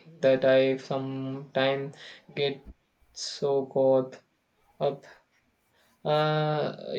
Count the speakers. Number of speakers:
one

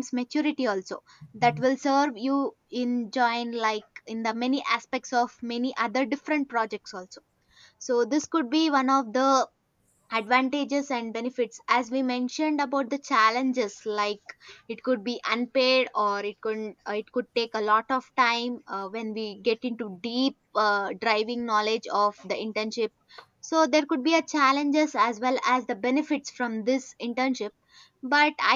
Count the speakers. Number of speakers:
one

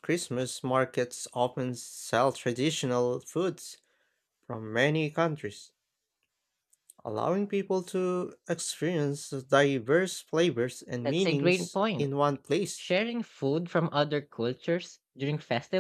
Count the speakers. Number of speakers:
two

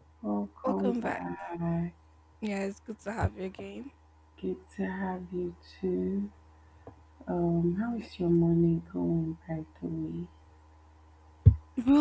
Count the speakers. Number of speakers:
two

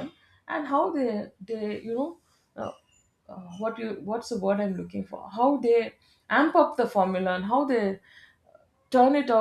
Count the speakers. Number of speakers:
one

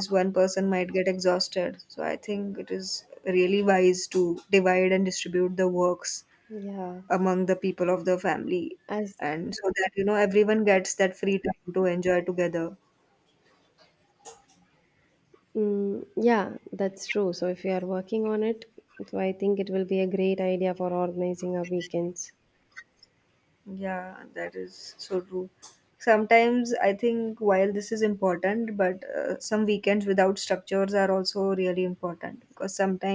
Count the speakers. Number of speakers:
two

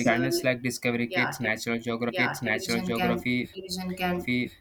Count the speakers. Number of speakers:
two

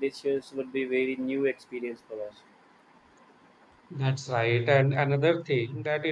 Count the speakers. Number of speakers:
two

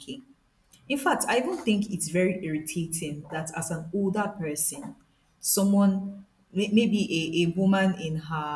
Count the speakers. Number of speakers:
one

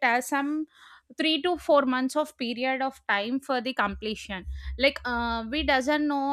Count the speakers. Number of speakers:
one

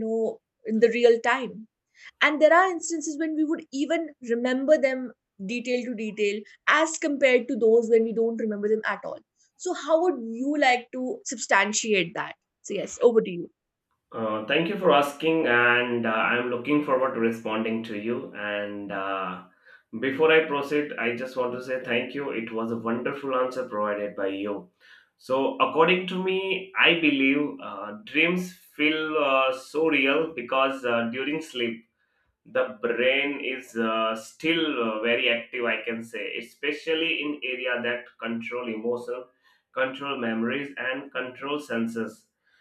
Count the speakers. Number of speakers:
two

